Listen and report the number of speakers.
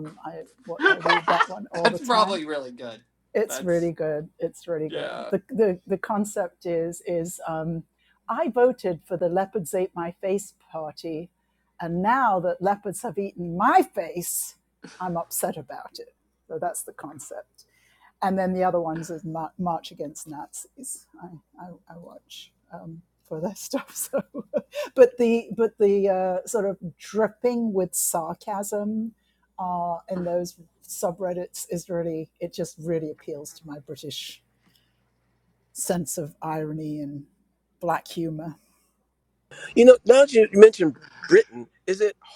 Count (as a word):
three